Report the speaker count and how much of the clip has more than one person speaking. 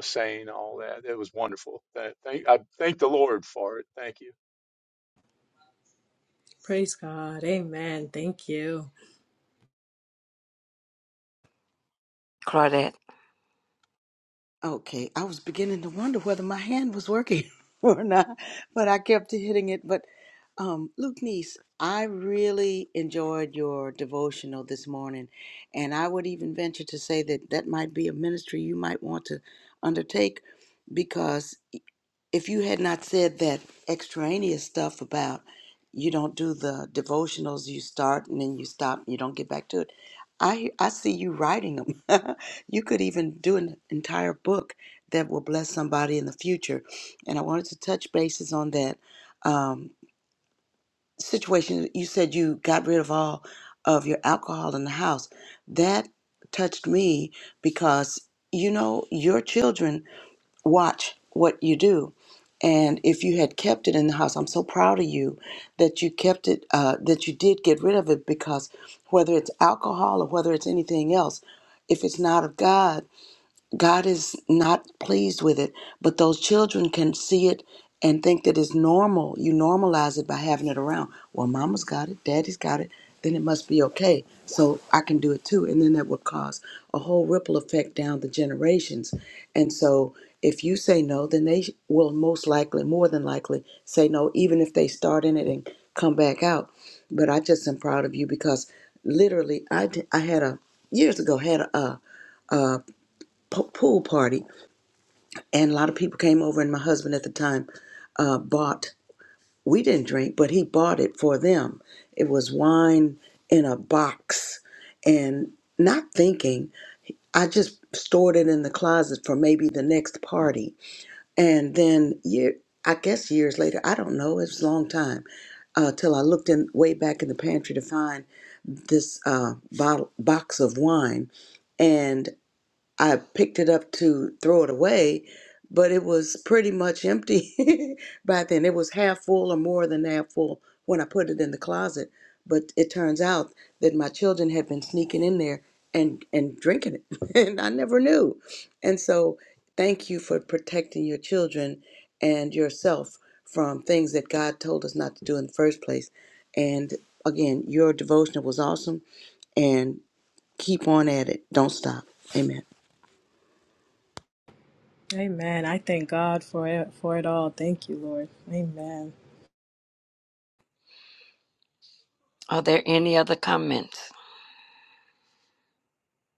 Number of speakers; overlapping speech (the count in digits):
4, no overlap